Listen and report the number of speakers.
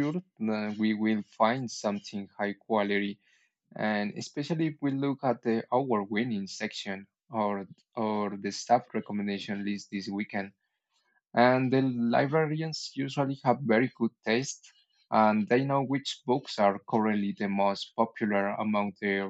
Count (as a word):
one